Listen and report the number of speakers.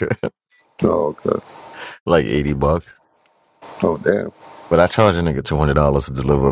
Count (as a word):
two